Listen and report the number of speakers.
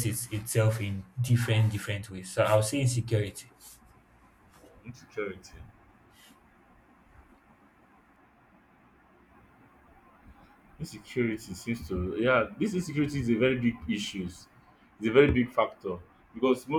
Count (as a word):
two